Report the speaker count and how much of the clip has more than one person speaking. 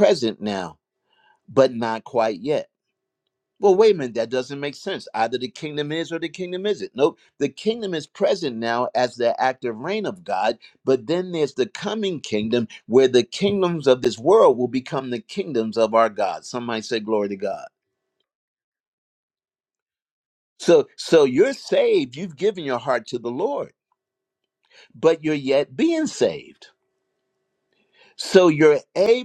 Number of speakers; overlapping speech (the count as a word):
one, no overlap